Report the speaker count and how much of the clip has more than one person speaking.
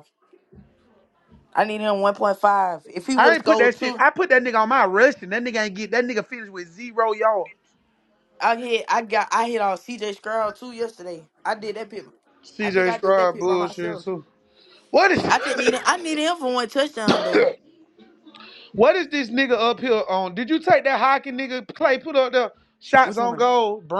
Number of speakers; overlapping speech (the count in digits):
2, about 11%